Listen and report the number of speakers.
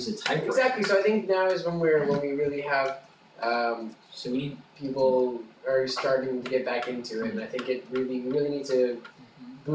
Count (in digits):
2